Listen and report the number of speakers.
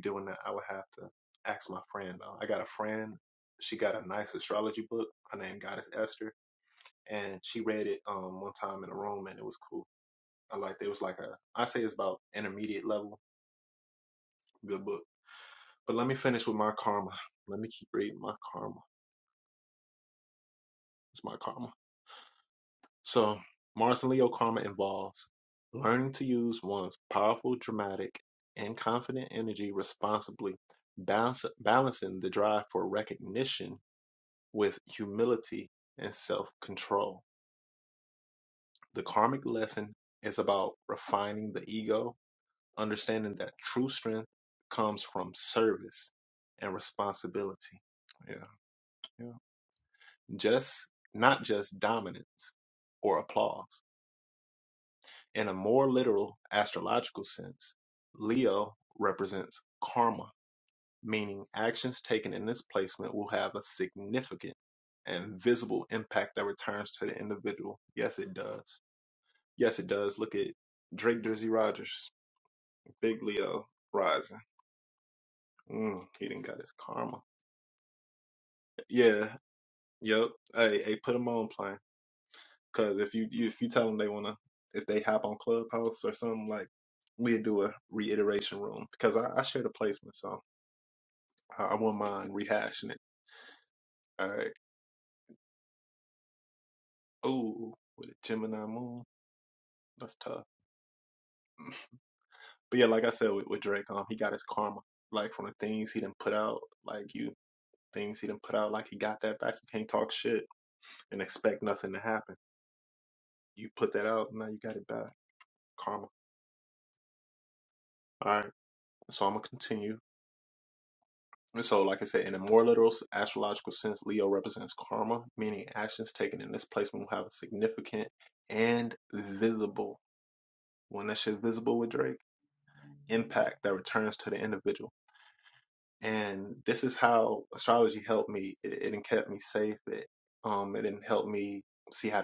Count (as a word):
one